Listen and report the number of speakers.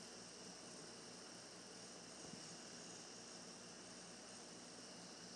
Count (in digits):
0